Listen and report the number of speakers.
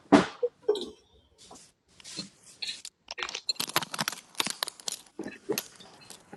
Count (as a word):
zero